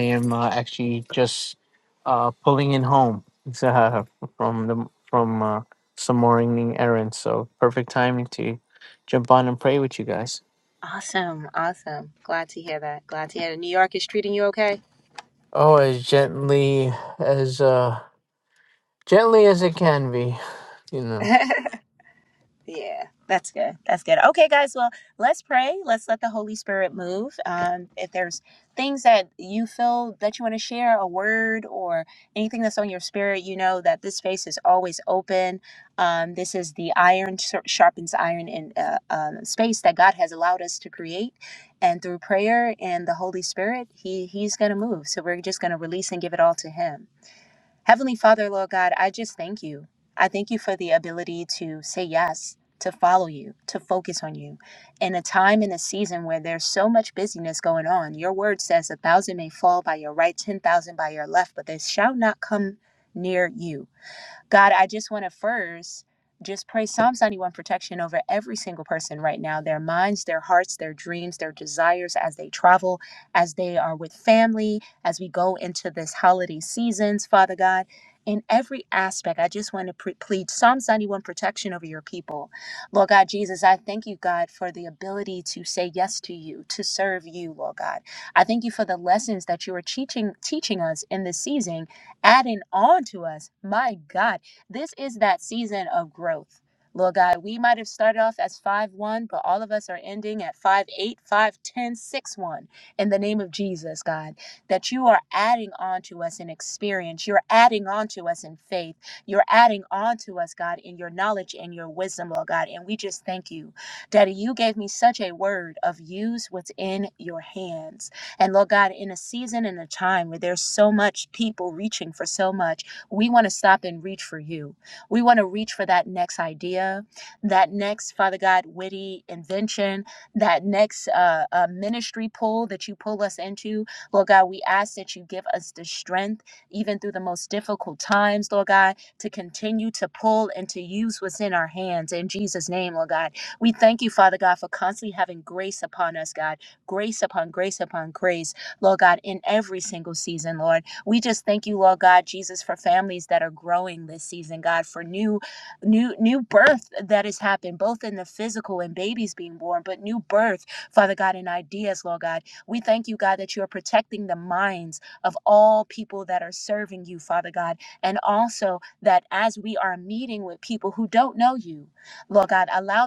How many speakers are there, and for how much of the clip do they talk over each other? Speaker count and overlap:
two, no overlap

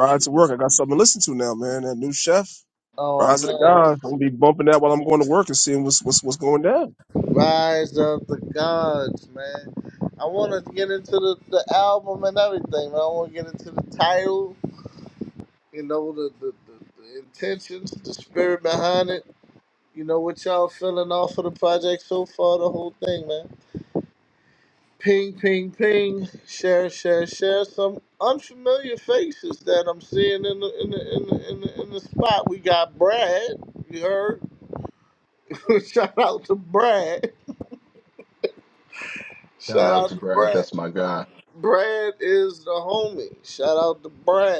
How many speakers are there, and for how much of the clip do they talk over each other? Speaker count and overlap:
three, about 4%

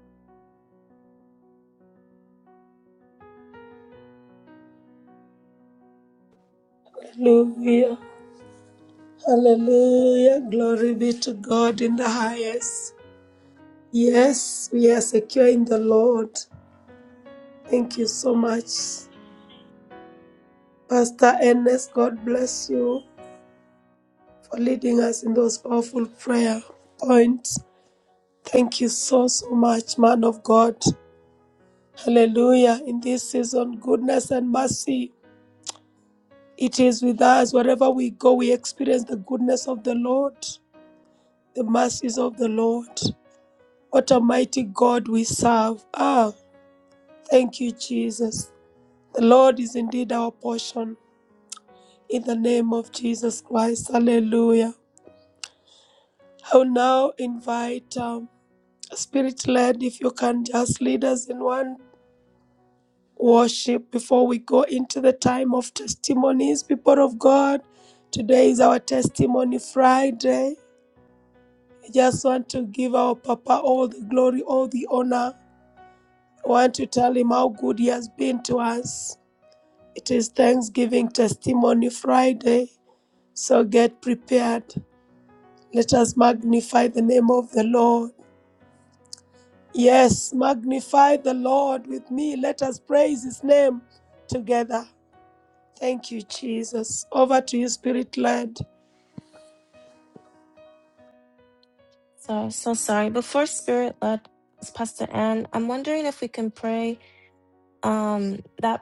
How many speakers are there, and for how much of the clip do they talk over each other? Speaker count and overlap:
two, no overlap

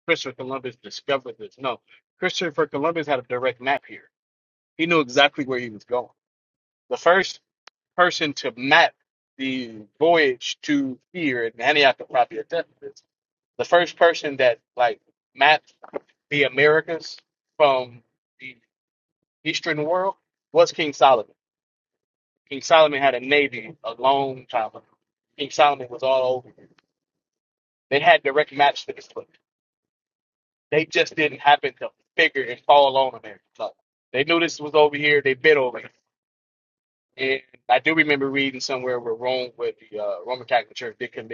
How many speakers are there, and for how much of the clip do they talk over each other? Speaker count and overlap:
one, no overlap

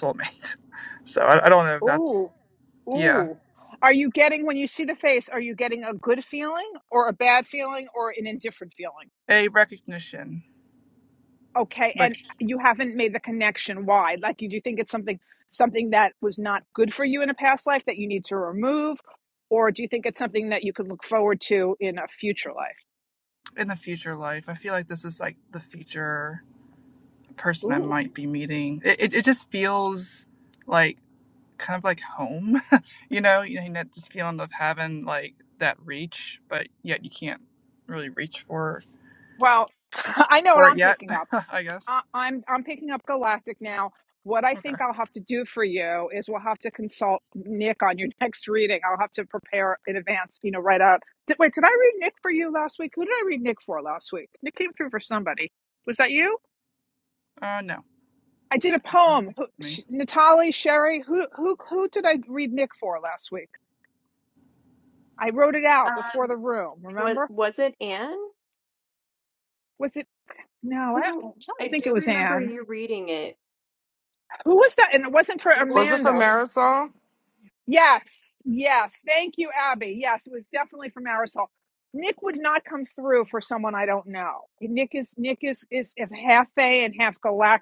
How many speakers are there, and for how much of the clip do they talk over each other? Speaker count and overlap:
four, about 5%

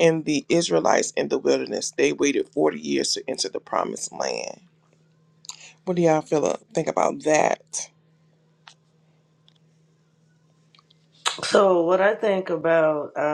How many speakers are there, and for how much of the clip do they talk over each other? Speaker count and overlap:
two, no overlap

